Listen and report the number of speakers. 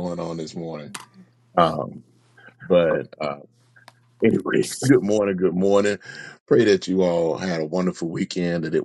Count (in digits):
1